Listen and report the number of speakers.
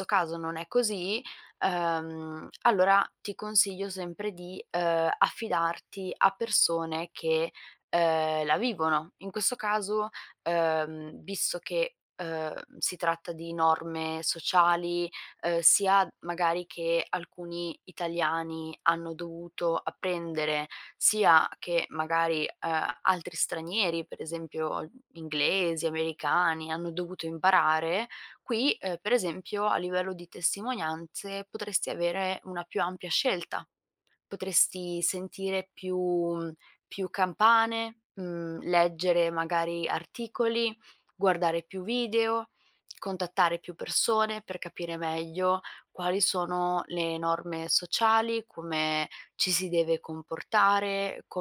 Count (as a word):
one